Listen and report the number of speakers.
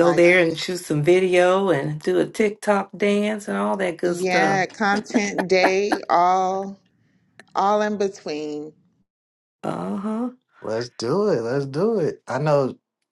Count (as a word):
three